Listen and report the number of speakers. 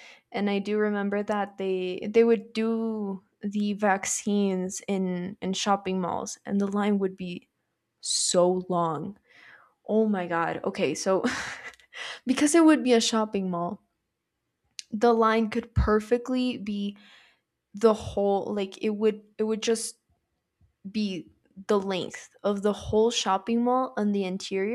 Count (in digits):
1